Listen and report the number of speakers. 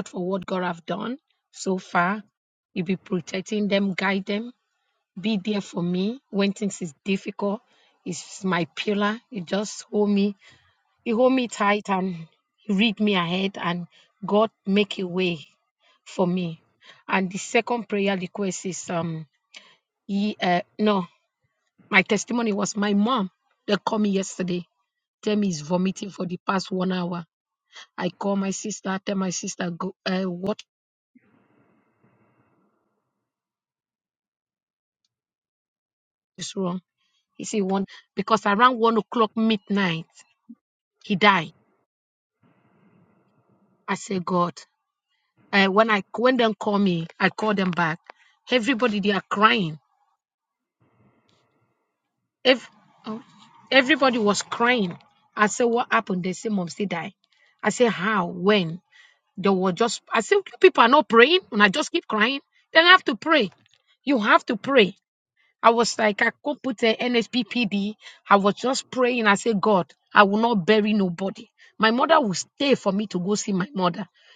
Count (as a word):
one